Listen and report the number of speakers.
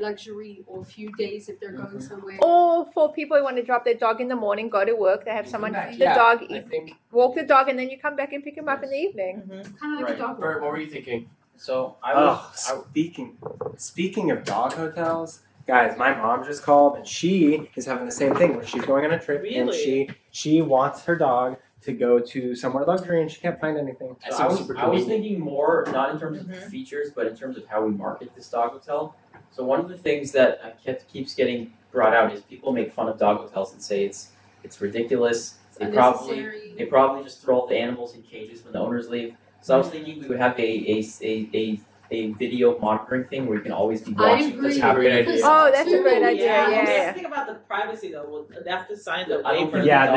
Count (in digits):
6